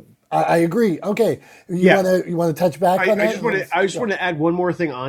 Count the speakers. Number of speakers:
2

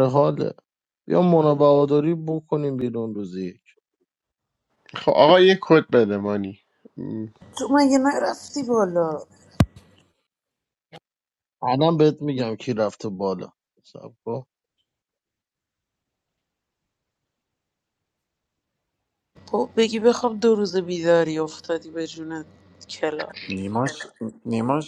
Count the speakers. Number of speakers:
4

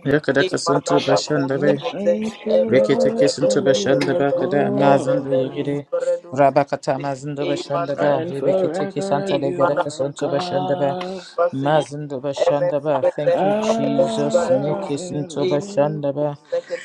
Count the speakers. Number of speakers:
3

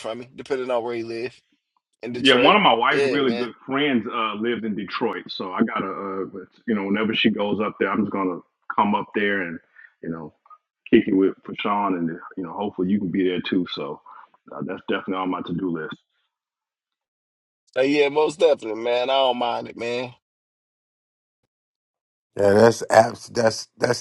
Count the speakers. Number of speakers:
3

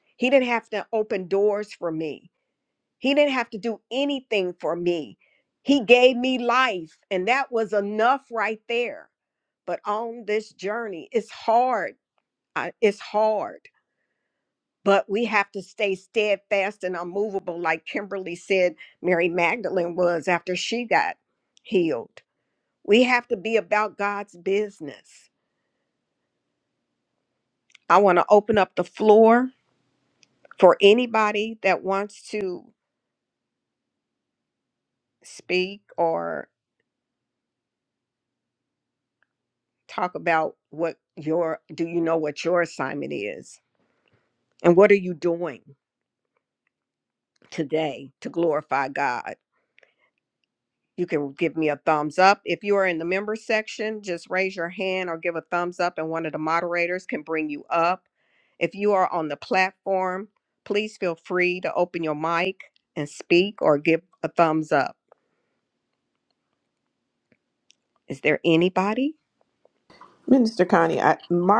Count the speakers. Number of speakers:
2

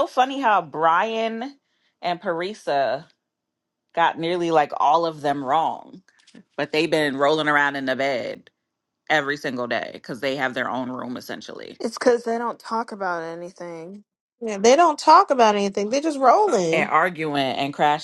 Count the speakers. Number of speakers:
3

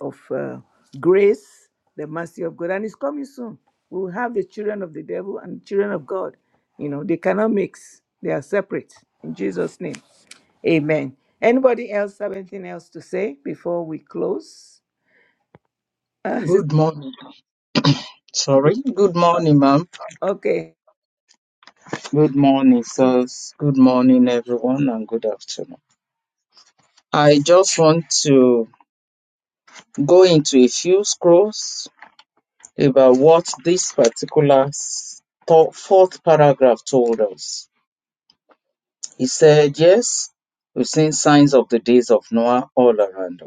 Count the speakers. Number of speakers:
2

